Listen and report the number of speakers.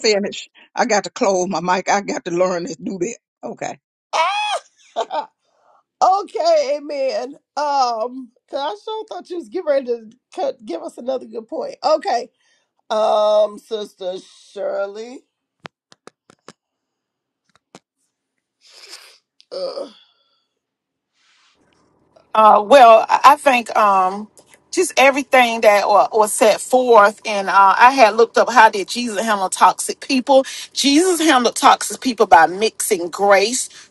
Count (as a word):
three